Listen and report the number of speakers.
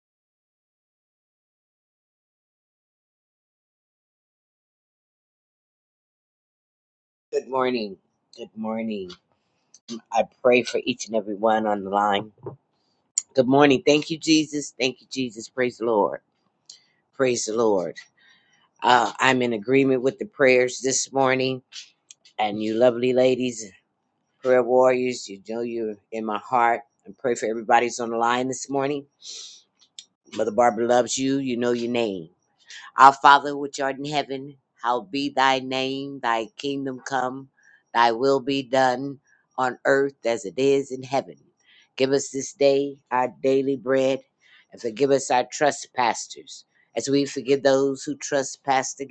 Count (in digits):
1